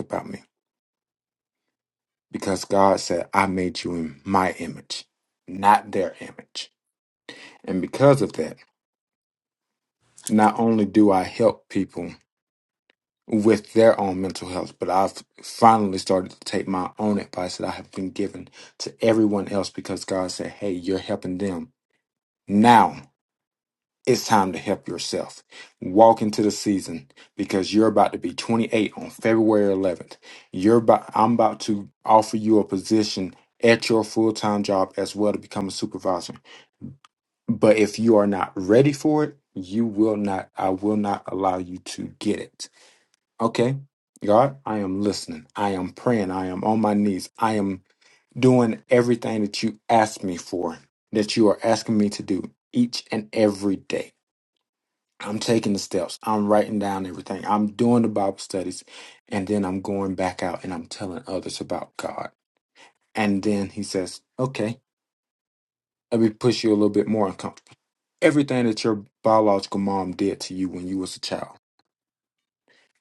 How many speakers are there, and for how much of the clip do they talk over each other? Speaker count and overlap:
one, no overlap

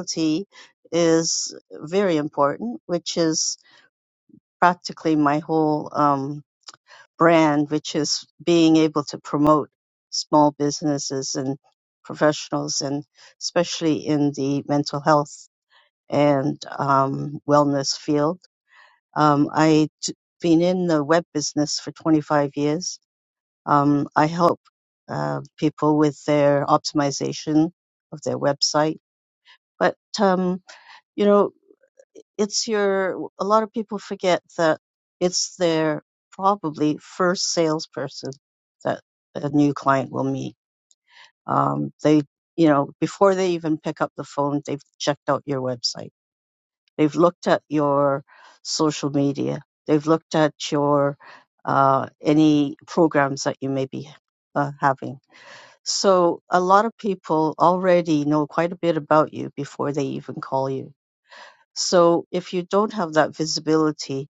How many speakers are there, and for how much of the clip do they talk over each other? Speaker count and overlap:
one, no overlap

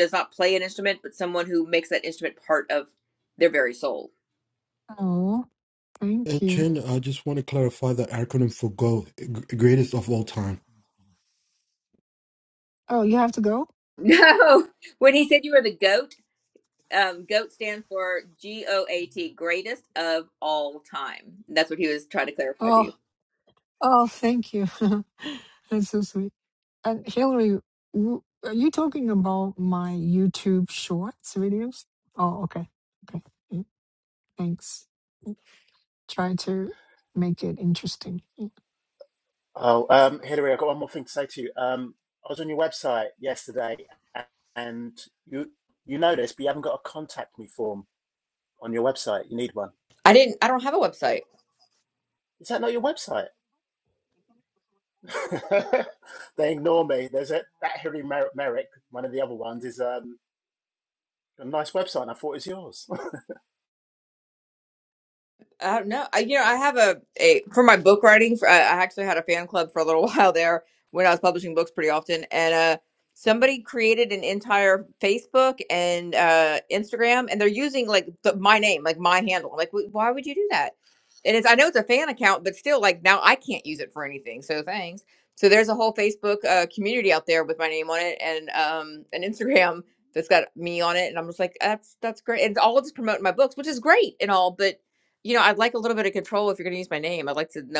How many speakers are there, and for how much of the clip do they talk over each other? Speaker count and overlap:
four, about 1%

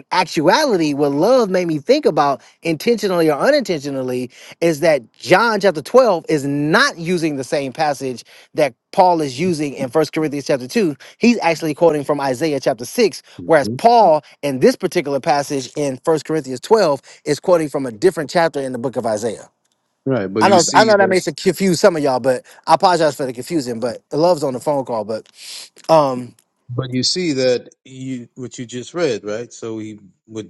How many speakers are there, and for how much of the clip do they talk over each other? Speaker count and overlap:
two, about 4%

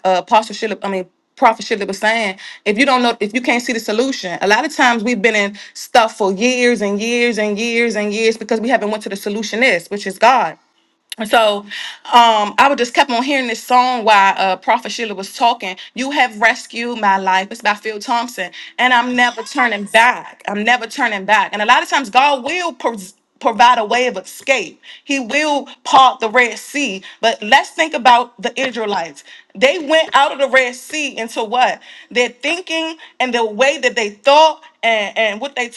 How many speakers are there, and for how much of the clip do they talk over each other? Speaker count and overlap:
one, no overlap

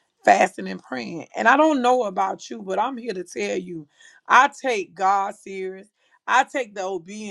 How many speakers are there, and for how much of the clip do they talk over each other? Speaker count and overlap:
one, no overlap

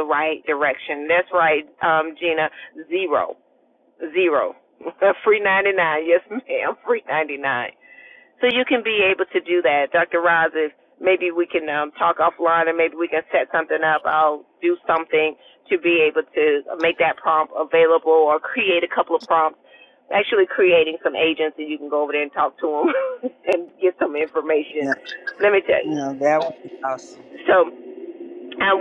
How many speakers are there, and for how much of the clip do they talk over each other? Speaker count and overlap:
two, about 1%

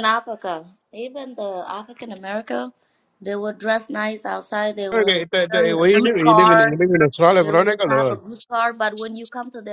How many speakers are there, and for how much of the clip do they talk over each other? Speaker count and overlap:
two, about 27%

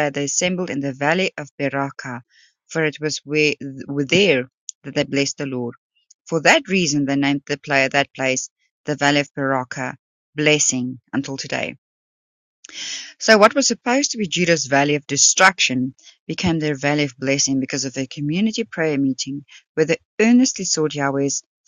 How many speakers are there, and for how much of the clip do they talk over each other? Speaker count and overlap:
one, no overlap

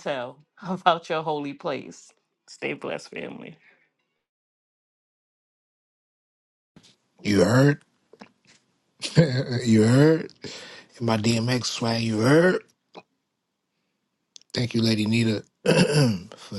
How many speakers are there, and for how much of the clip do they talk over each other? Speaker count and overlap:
two, no overlap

